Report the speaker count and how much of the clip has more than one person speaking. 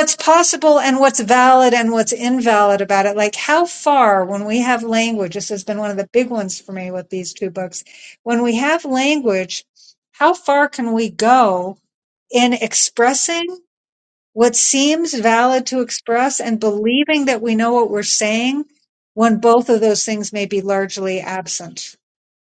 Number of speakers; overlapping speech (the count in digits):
1, no overlap